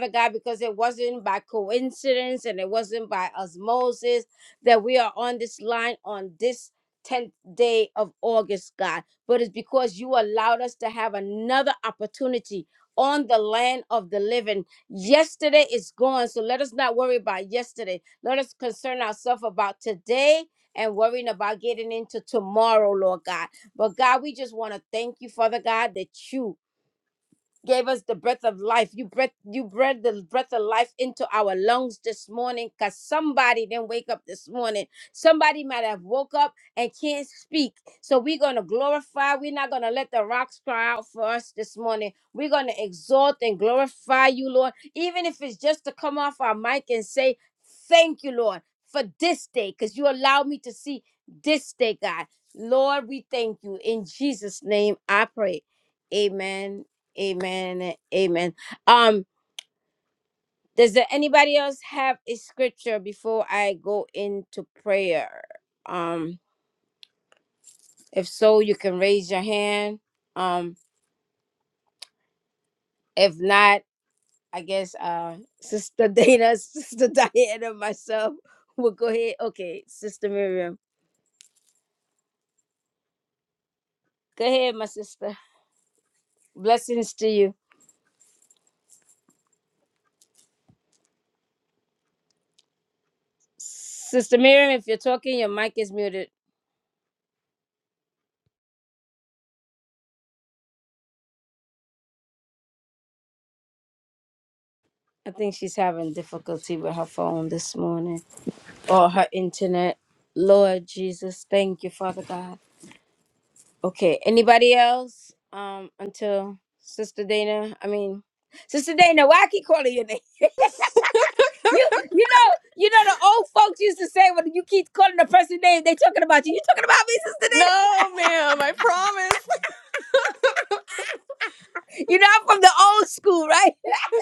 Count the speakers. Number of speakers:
two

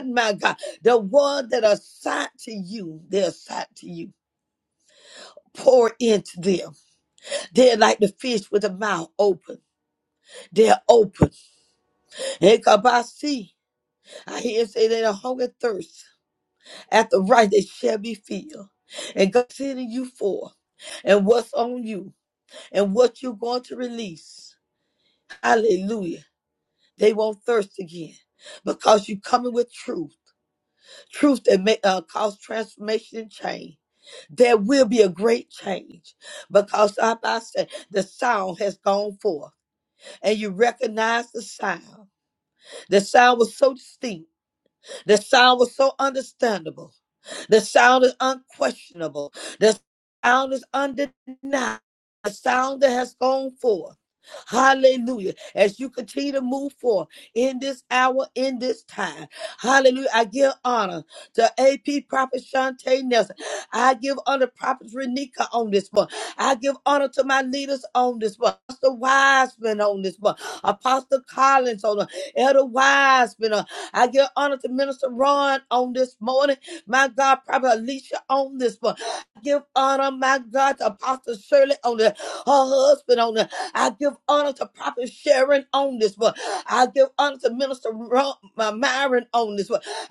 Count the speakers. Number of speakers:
one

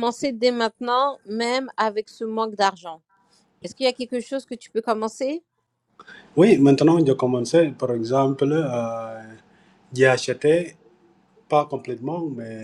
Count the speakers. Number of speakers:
two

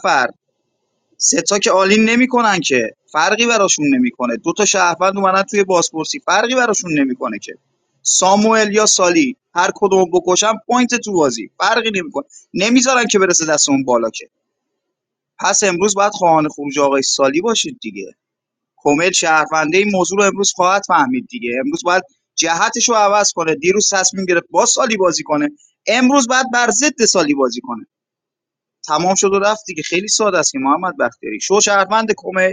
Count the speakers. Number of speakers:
one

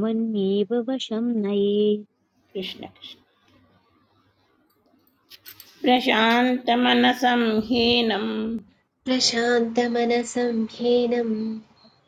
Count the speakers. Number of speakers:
three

